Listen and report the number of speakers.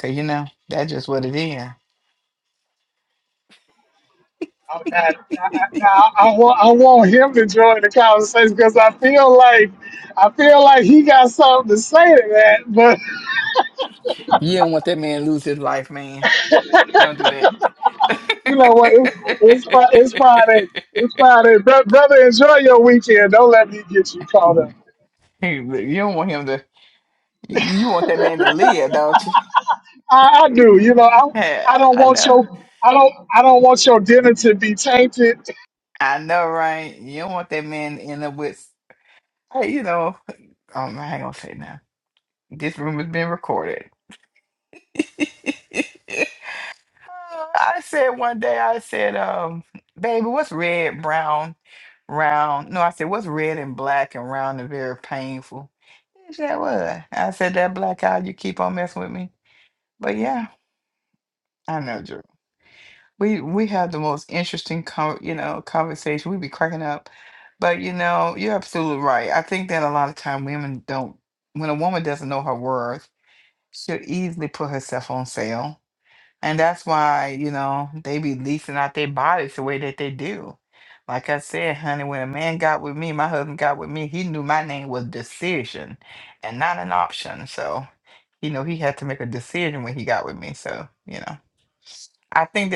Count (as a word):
two